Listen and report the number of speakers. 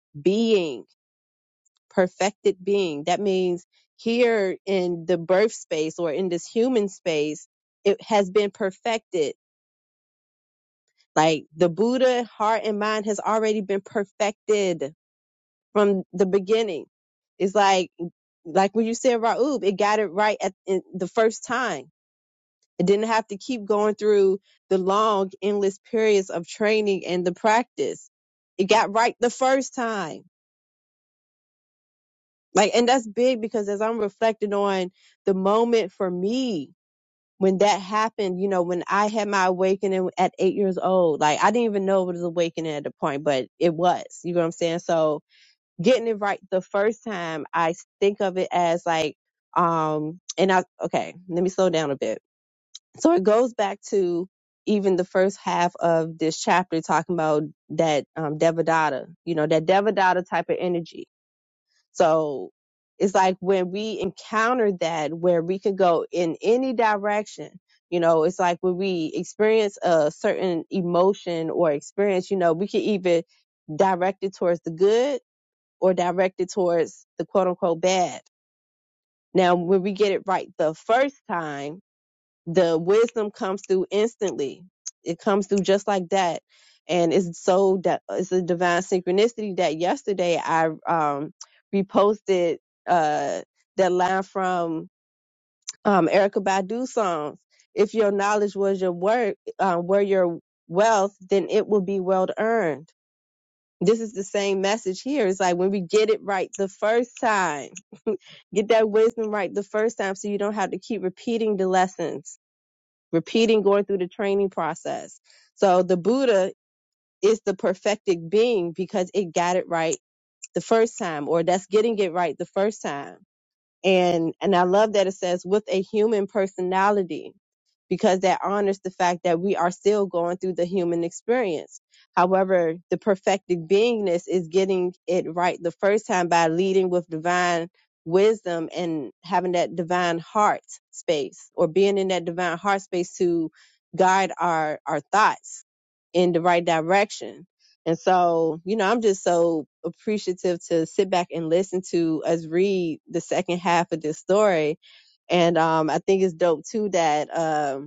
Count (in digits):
1